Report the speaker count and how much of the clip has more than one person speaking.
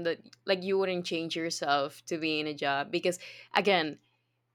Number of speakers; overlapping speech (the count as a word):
one, no overlap